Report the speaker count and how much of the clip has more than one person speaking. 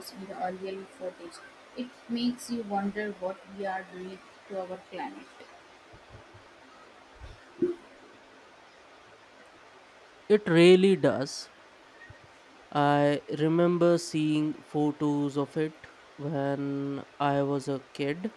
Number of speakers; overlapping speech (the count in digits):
2, no overlap